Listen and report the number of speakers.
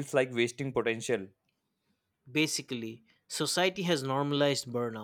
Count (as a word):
two